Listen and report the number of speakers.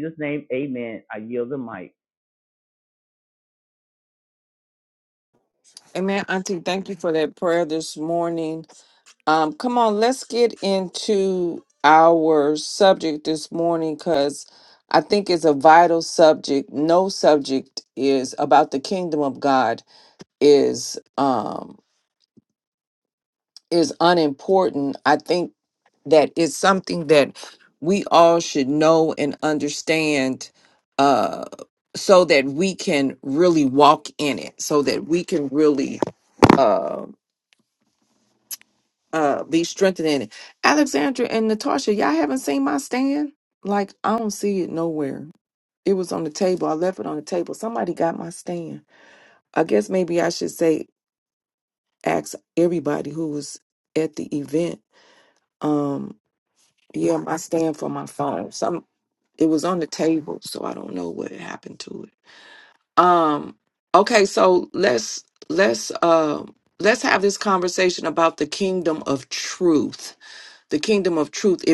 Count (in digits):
2